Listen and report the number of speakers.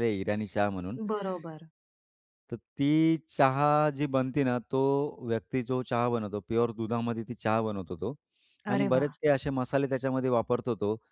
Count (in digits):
2